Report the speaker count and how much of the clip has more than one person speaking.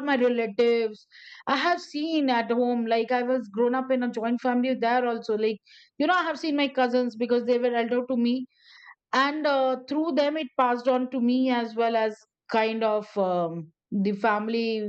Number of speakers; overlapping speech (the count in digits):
1, no overlap